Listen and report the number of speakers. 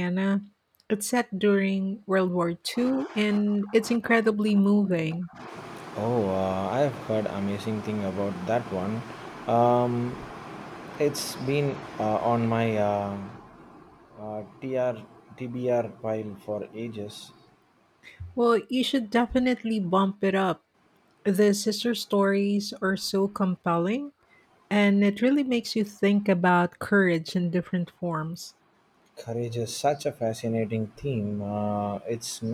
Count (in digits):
2